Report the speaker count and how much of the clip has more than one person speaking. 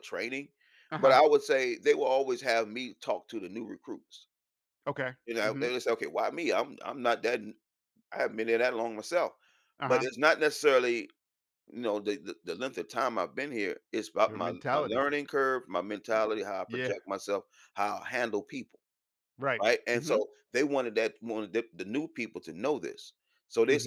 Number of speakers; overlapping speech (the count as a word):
two, about 9%